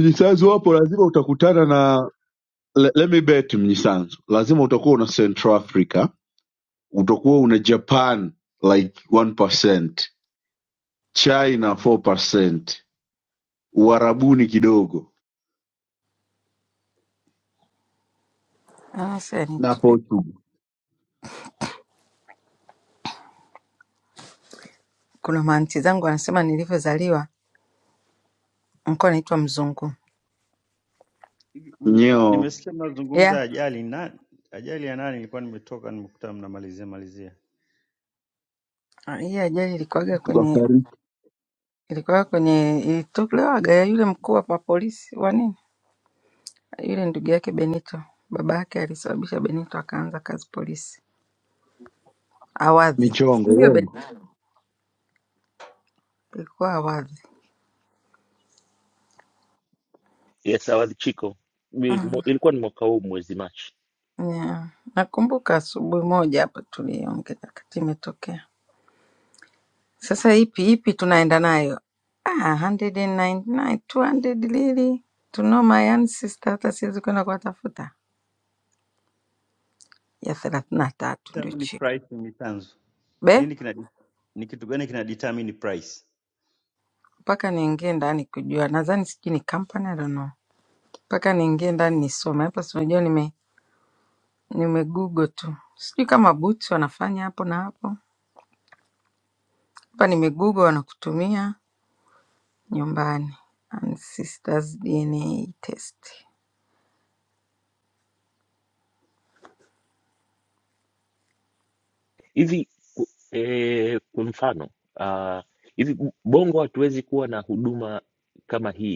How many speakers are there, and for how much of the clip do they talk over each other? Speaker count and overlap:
four, about 3%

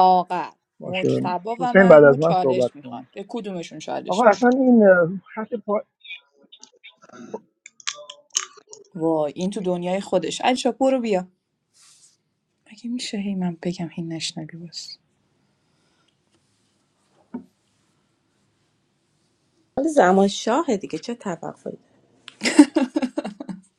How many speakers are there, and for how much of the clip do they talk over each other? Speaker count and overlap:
three, about 9%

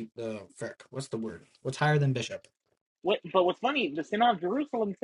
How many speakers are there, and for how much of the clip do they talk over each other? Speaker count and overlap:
two, no overlap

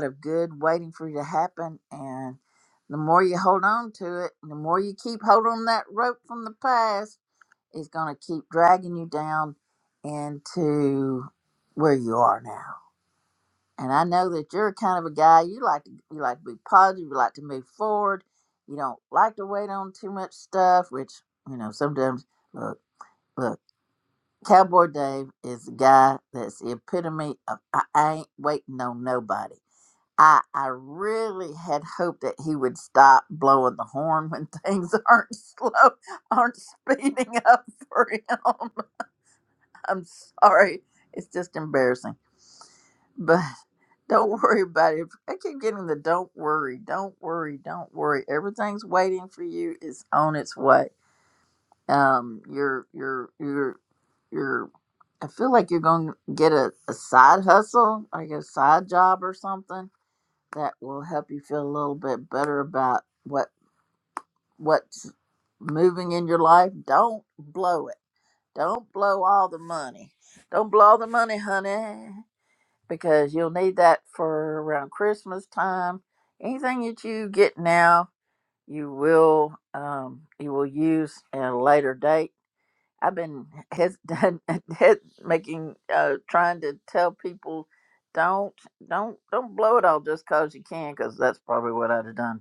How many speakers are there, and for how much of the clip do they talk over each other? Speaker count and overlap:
one, no overlap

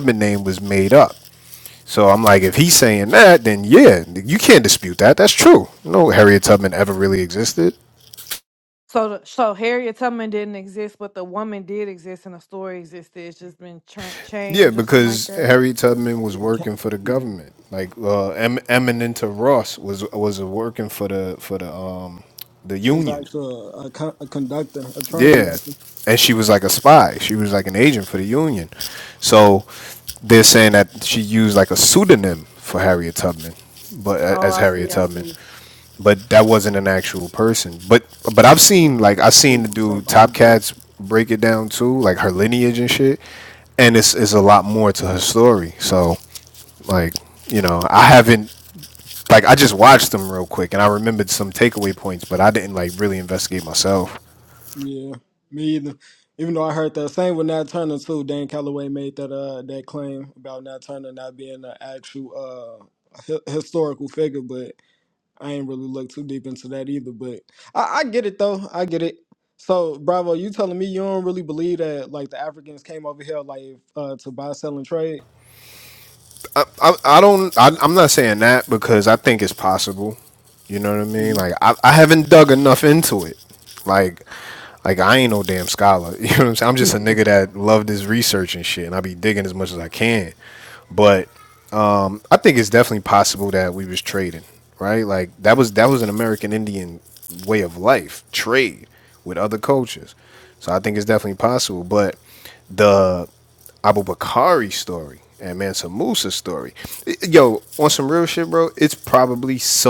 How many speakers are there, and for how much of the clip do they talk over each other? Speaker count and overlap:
three, about 4%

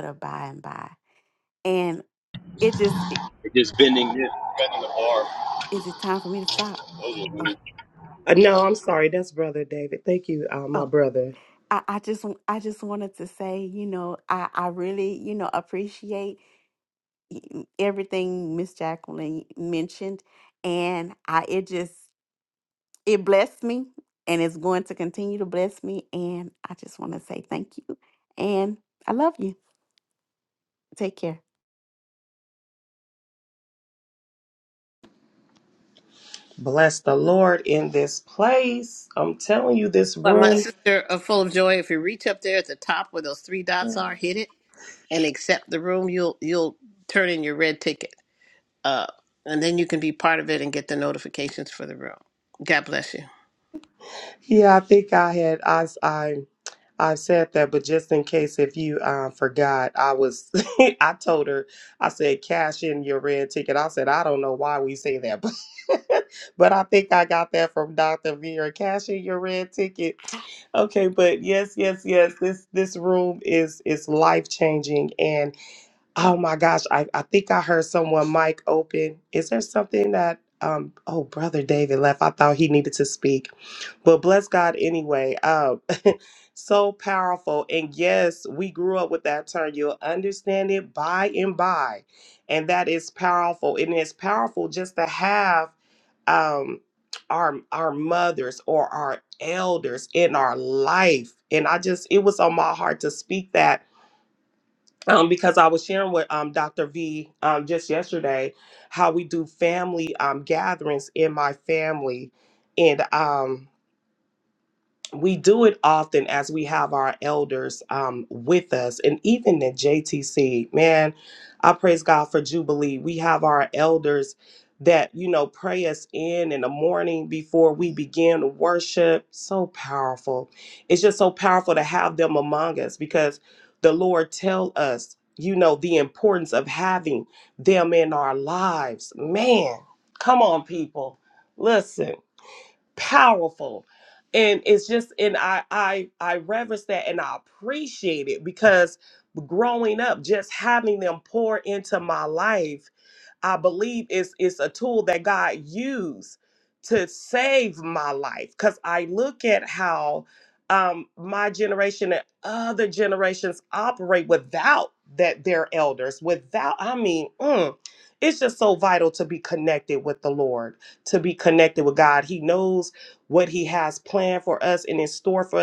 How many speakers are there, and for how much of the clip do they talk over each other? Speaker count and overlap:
four, under 1%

